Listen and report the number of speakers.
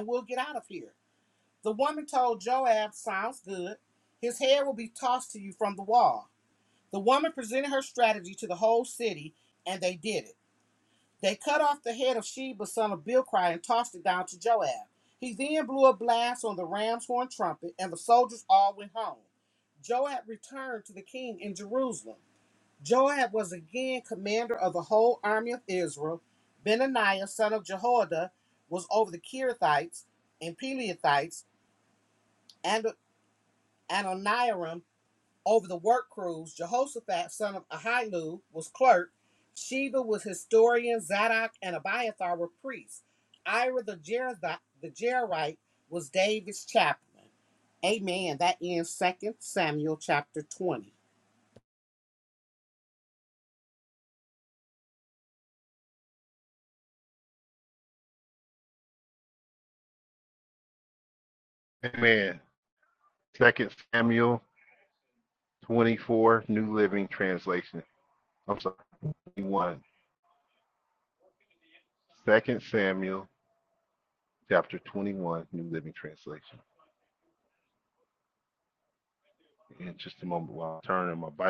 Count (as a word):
two